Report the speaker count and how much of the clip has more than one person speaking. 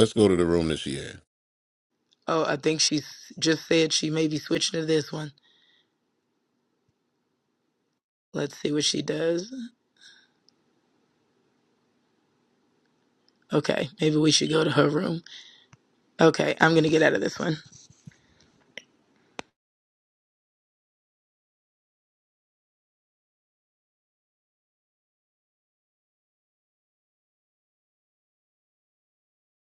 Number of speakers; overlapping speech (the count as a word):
two, no overlap